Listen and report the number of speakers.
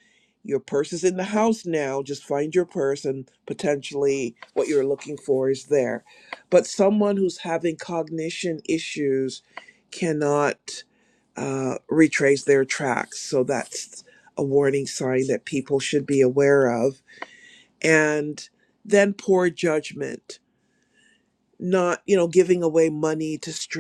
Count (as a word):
one